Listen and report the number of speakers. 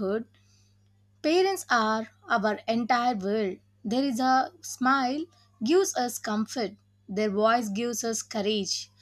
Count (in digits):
1